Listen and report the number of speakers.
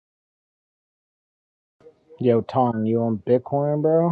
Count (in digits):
1